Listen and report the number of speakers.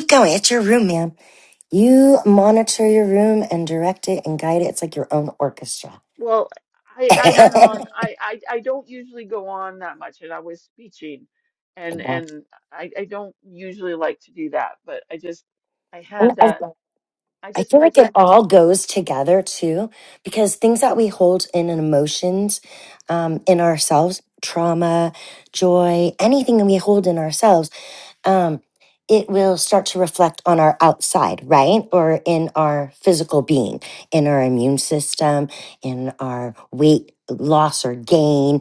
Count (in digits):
2